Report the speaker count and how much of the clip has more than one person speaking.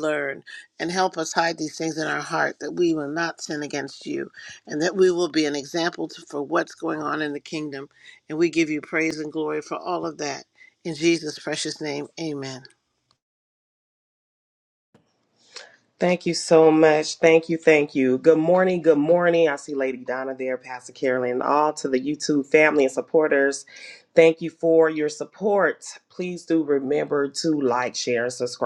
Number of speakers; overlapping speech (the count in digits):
2, no overlap